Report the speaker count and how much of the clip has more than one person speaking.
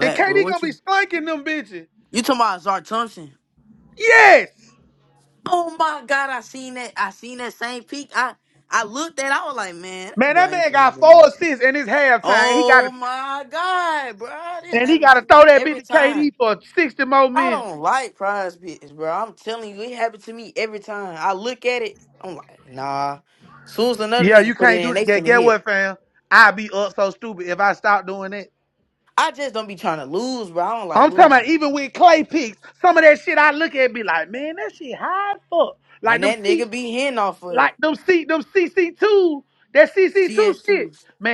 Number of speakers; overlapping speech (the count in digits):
2, about 18%